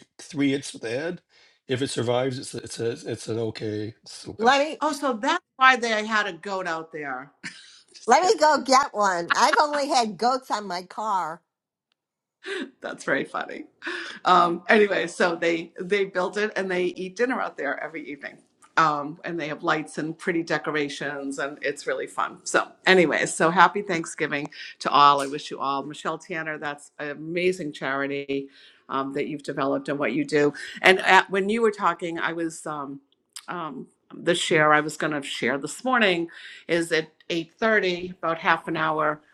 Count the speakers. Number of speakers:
three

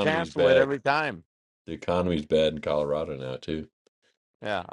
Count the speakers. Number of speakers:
two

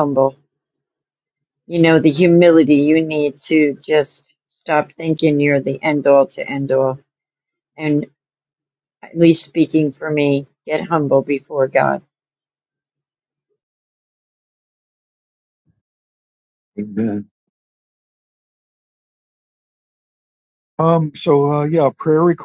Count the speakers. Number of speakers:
two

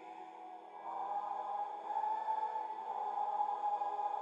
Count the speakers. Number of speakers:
zero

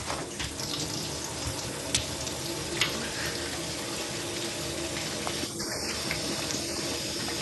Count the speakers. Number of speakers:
zero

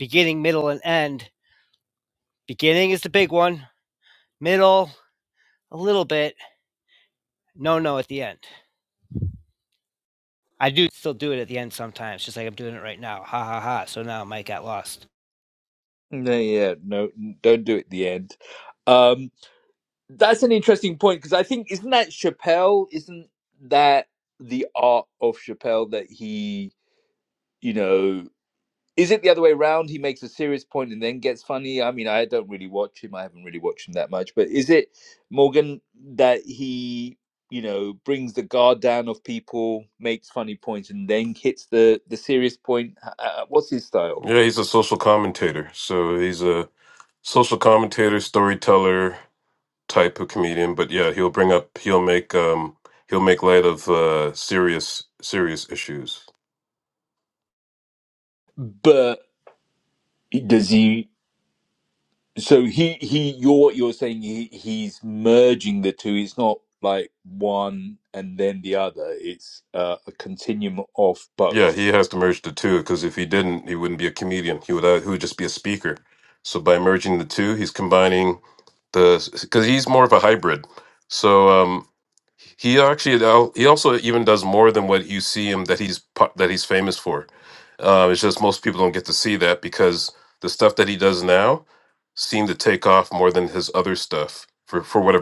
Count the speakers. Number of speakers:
three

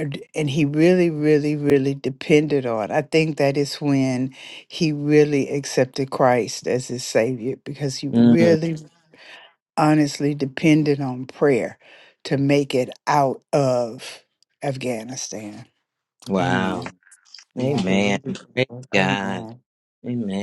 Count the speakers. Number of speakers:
two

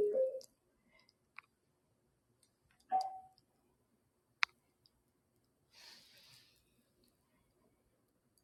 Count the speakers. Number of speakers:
zero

